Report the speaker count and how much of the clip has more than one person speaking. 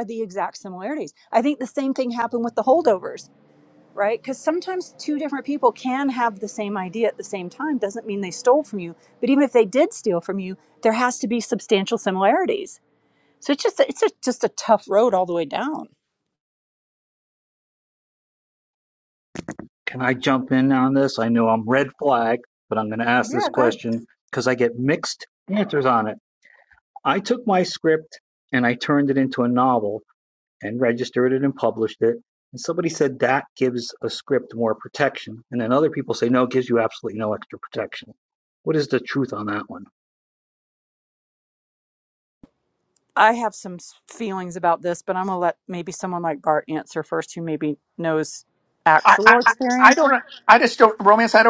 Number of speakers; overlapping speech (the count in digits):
3, about 3%